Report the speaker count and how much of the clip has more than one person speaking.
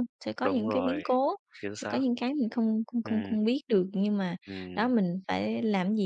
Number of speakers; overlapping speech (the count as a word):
two, about 22%